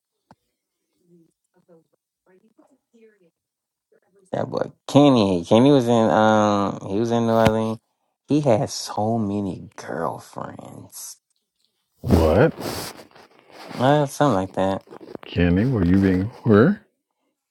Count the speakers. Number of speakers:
two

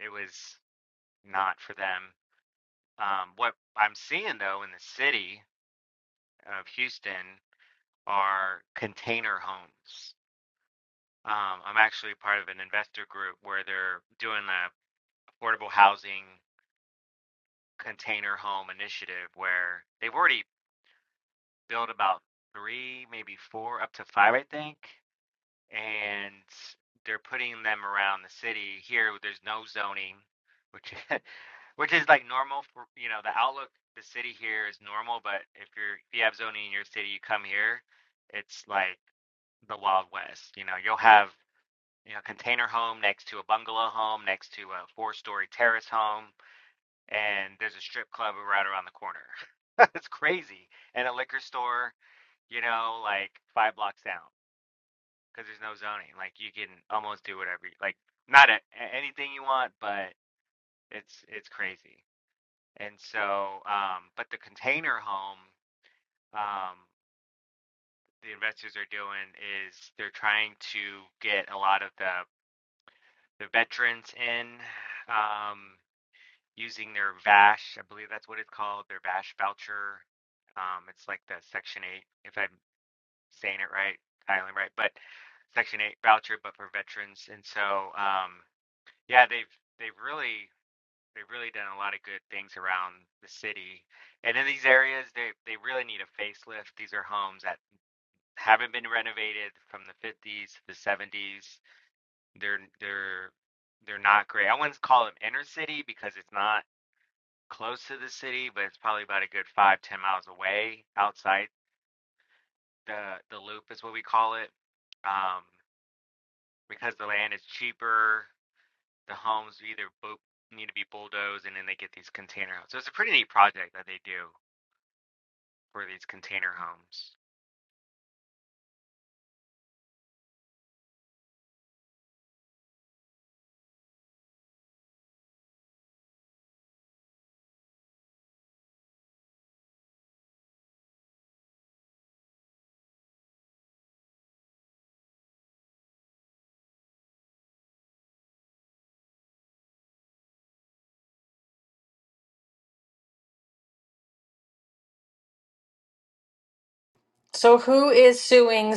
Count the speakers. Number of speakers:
two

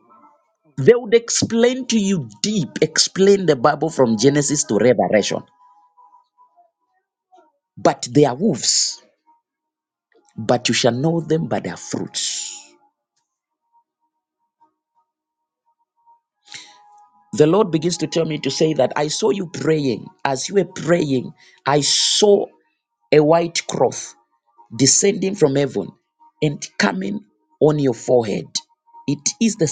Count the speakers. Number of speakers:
one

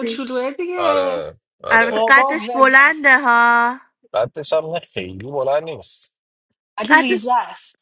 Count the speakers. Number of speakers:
three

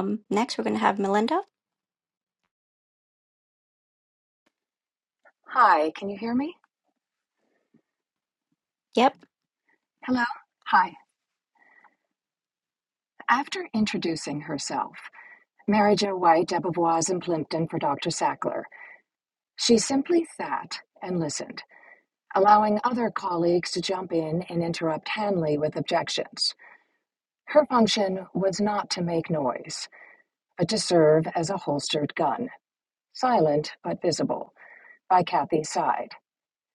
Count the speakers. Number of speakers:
two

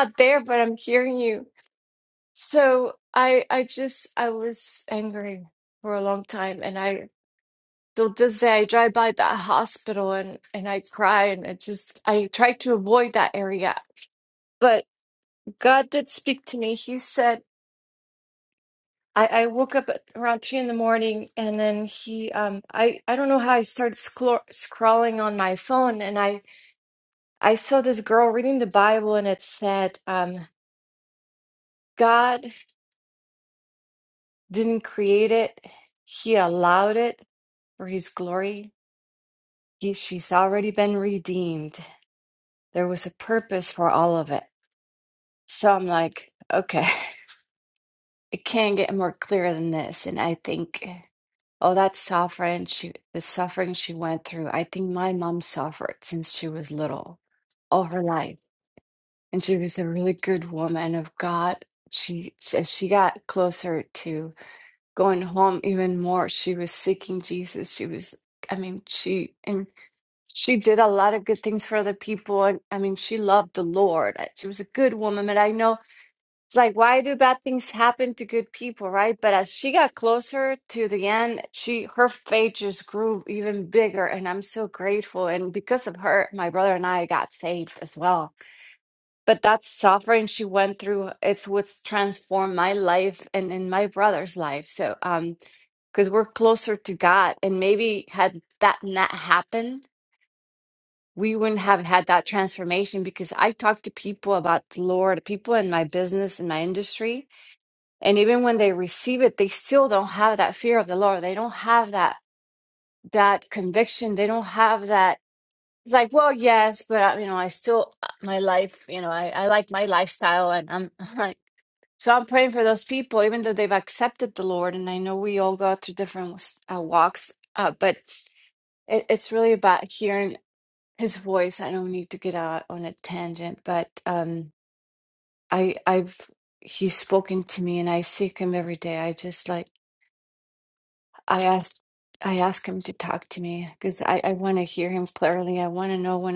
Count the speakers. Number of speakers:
one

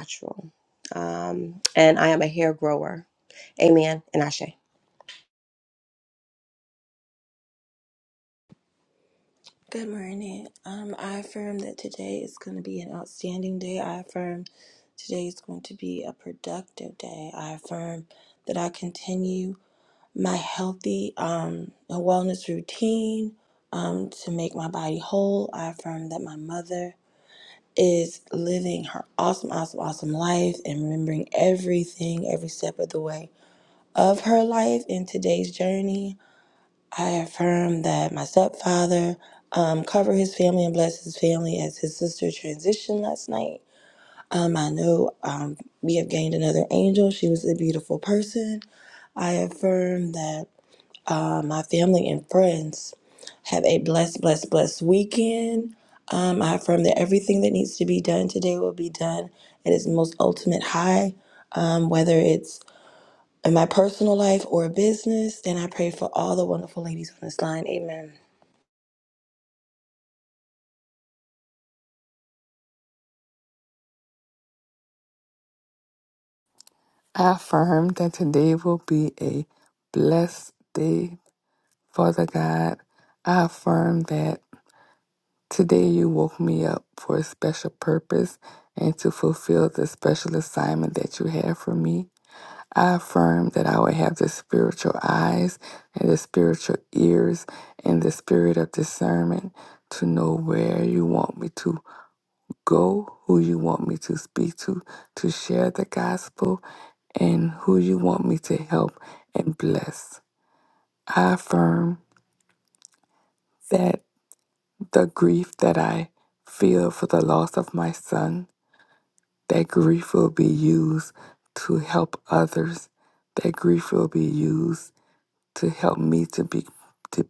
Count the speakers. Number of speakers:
three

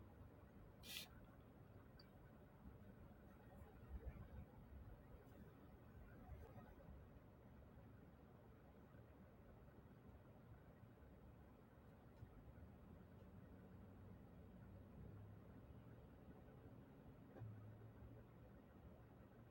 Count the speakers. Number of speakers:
zero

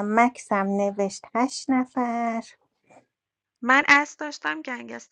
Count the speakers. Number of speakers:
two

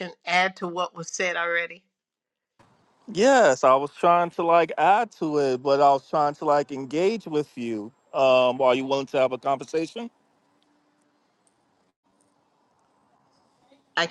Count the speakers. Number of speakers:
two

